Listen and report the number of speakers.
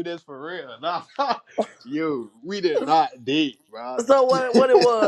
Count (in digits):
2